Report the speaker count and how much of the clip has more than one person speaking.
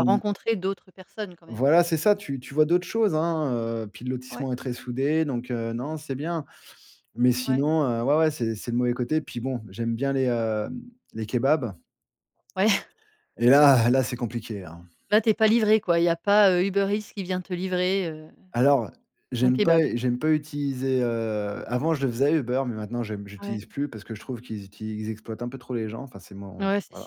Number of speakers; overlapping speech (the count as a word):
two, about 7%